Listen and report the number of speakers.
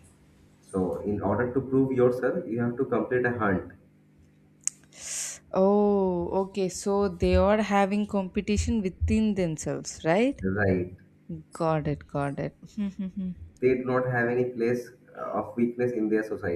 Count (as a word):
two